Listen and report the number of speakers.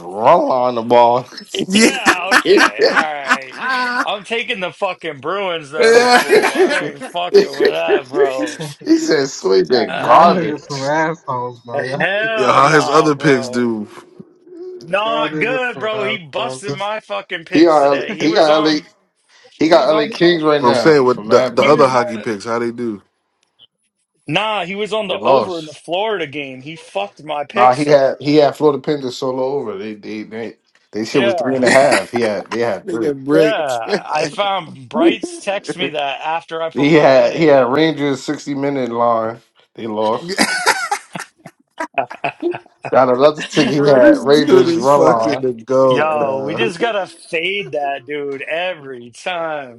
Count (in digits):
4